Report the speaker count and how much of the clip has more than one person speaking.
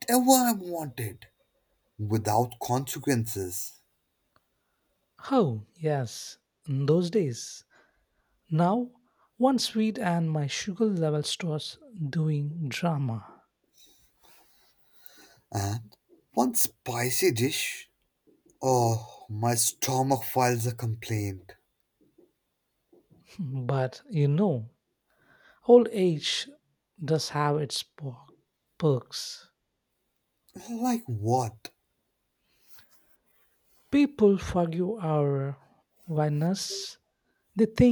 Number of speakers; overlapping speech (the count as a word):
two, no overlap